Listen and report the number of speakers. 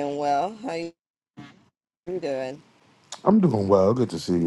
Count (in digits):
2